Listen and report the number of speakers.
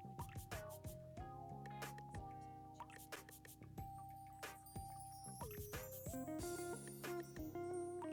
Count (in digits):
0